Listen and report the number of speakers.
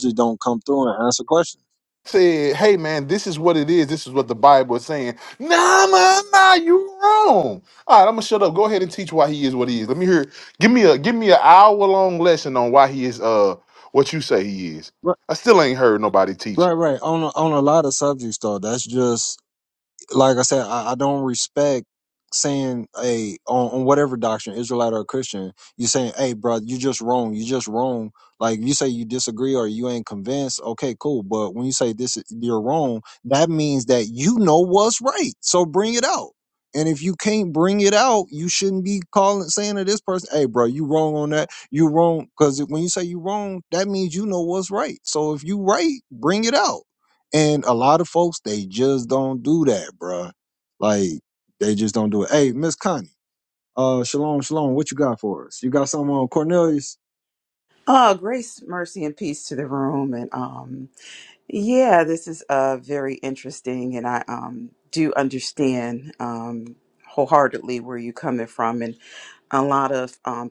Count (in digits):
3